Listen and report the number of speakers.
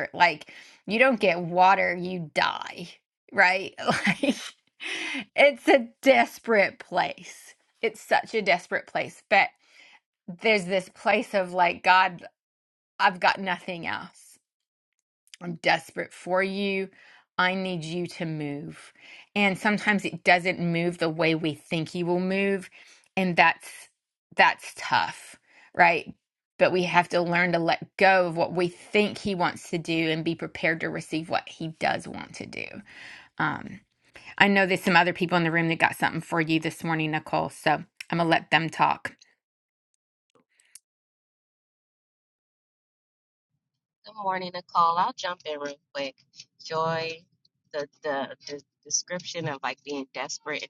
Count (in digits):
2